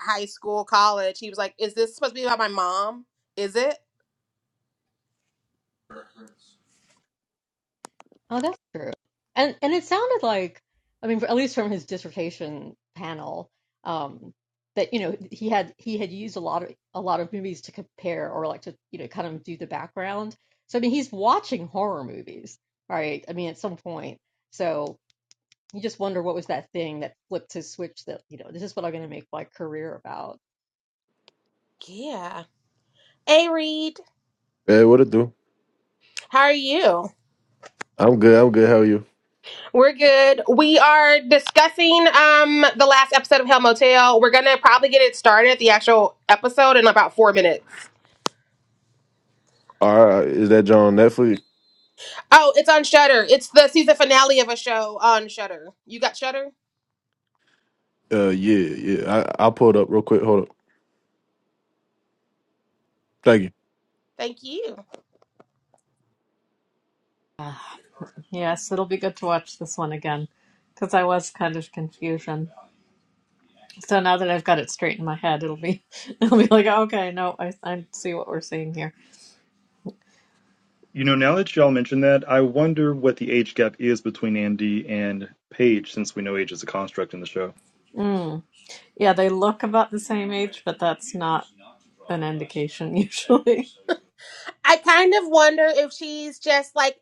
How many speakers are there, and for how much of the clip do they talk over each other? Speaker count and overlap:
5, no overlap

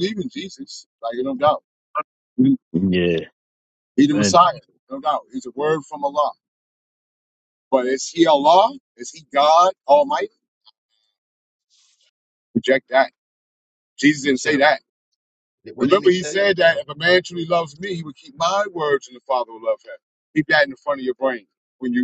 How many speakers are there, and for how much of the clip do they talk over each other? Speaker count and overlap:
2, about 7%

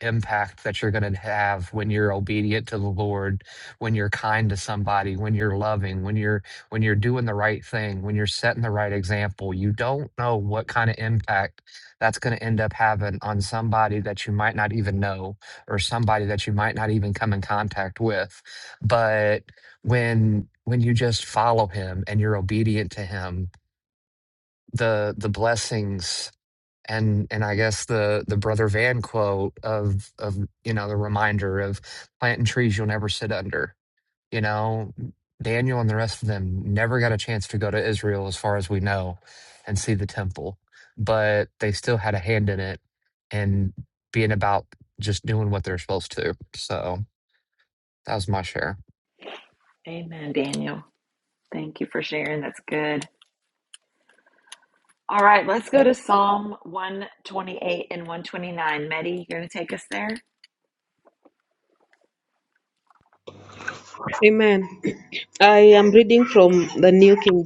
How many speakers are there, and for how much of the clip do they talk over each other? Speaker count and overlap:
3, no overlap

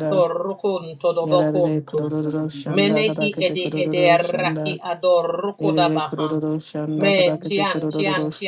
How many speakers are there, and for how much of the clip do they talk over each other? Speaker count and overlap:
2, about 61%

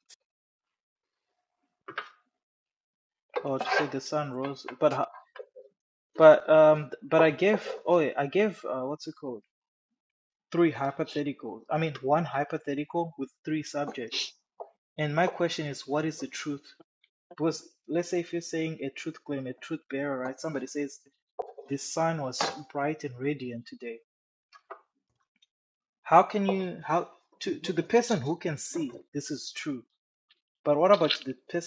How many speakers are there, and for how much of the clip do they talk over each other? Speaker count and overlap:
1, no overlap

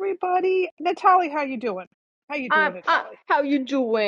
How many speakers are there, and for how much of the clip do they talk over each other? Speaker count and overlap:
2, about 16%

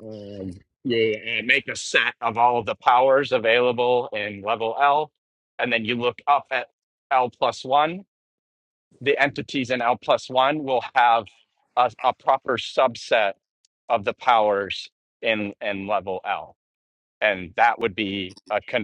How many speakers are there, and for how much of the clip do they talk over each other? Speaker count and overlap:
1, no overlap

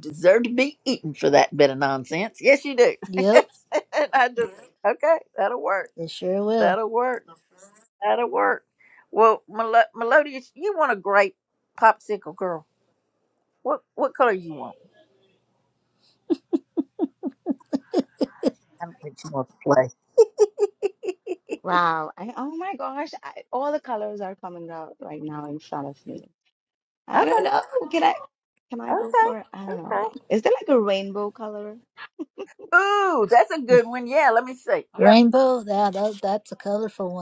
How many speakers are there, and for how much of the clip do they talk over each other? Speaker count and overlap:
3, about 5%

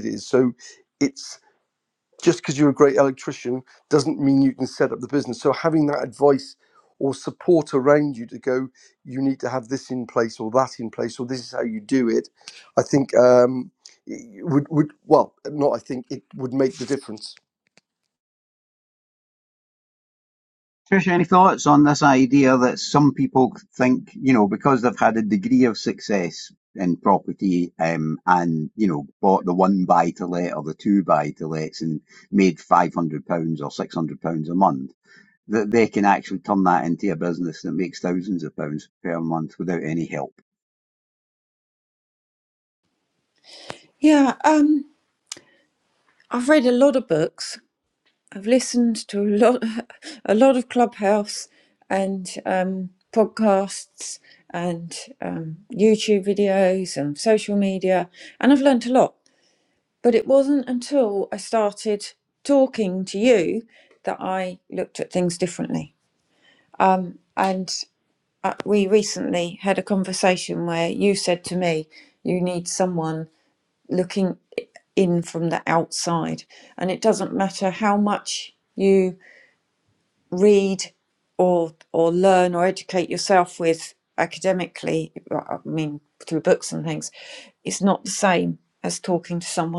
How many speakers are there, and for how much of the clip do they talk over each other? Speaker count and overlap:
3, no overlap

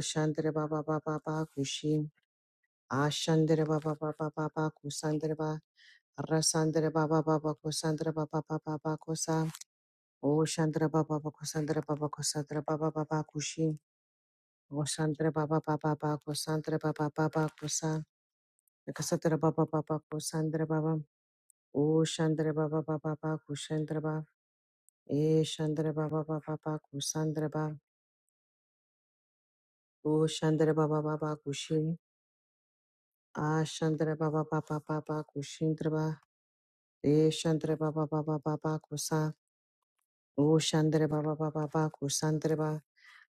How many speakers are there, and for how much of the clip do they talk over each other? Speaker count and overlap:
1, no overlap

